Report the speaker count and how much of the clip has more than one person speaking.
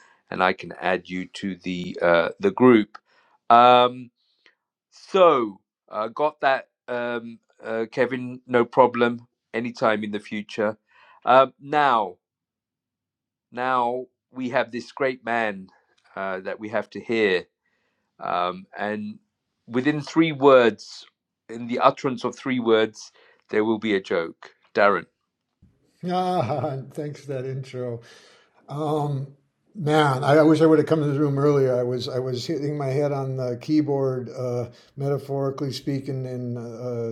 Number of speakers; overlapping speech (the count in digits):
2, no overlap